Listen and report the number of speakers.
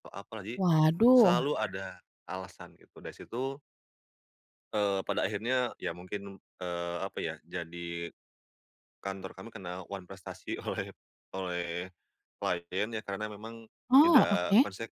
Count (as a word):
two